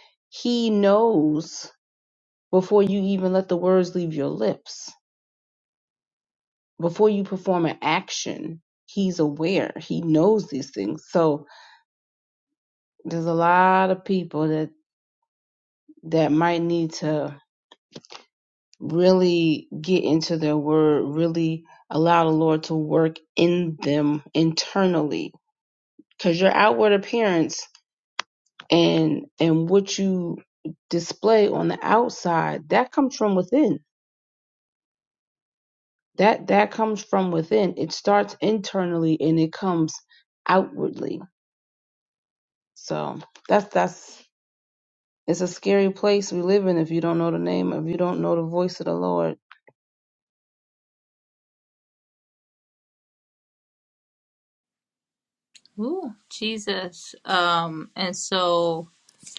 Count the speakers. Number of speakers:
two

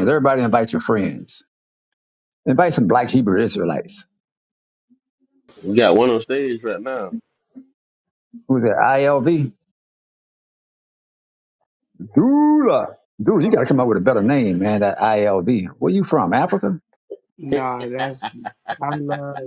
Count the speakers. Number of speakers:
three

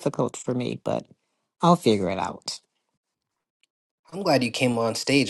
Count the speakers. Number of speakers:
two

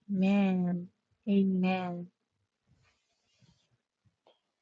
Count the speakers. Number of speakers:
one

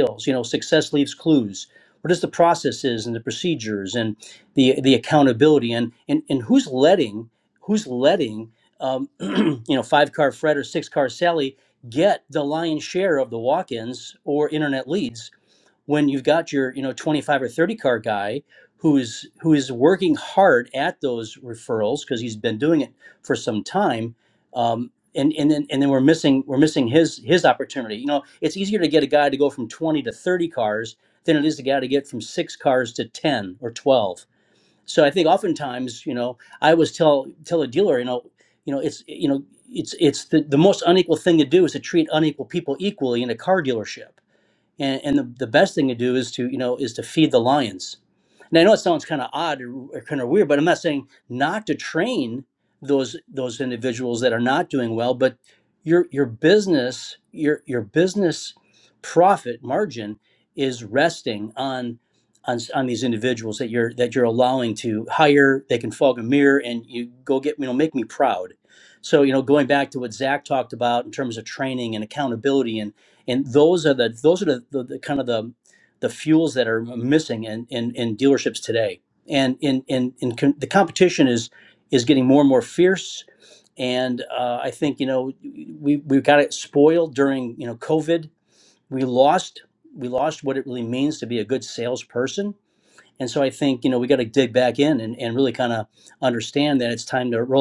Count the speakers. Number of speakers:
one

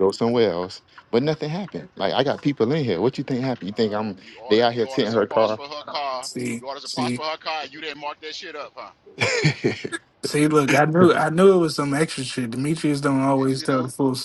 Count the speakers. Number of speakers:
three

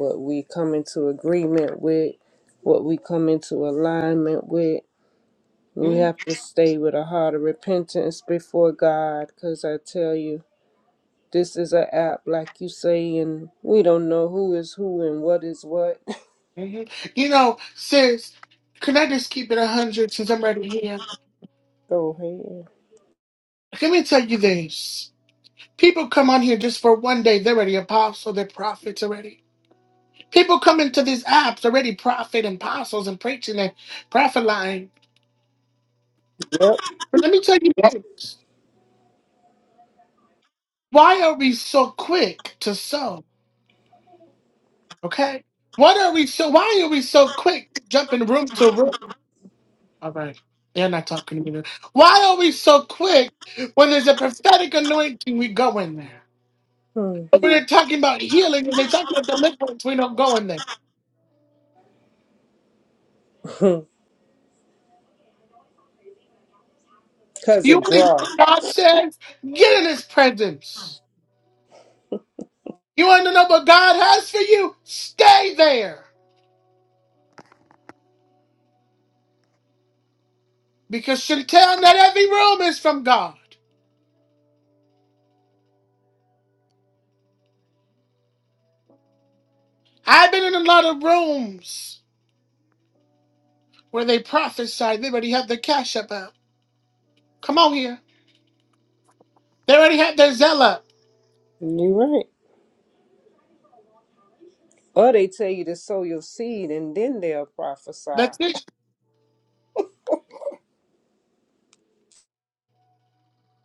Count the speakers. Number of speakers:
two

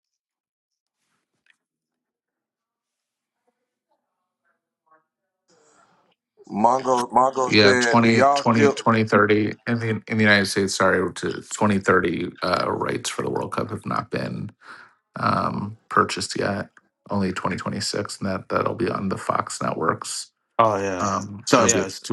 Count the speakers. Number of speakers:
three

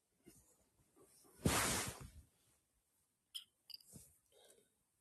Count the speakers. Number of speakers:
zero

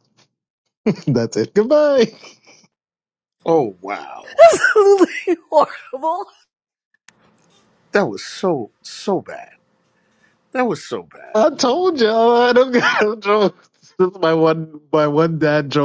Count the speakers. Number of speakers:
three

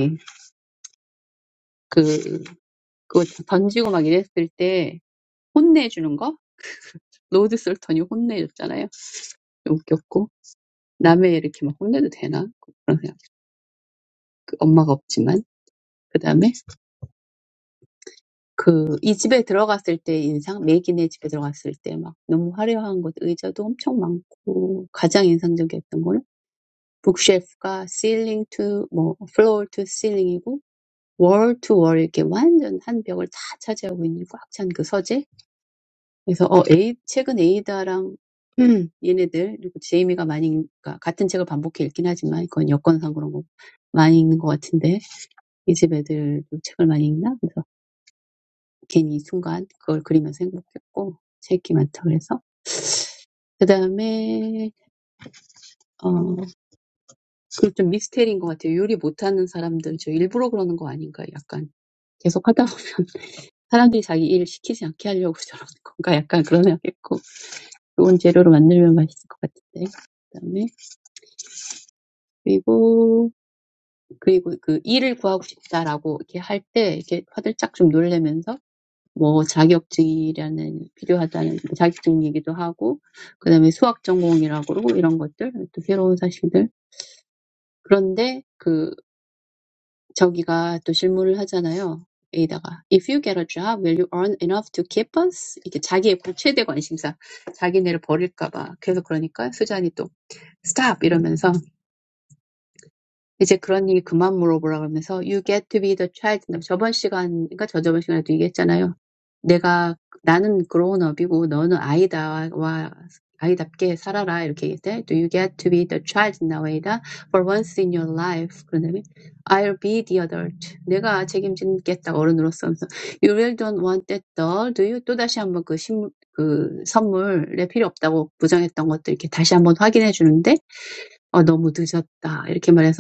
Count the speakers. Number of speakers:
one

